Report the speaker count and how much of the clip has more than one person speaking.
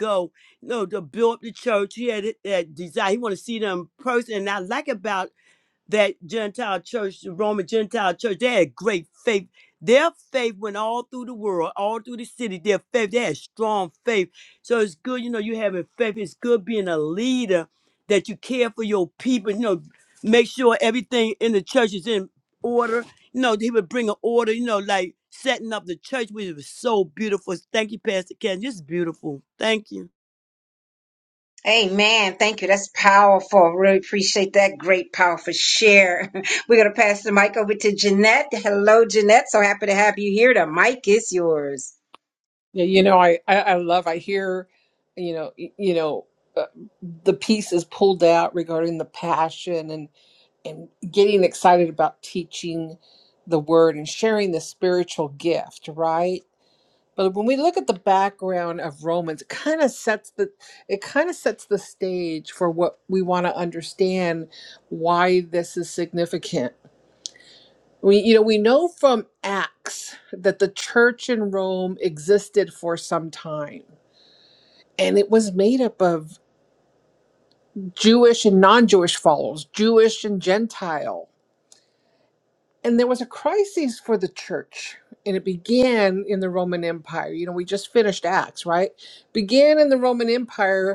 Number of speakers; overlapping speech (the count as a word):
three, no overlap